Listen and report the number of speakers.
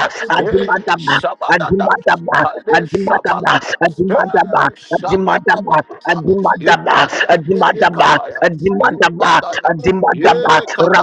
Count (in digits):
2